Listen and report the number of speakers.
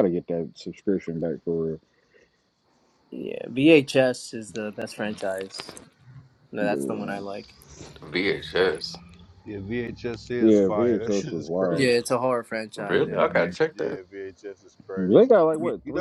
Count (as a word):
four